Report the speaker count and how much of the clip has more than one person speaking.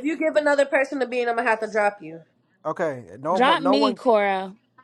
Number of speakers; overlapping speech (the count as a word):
three, about 13%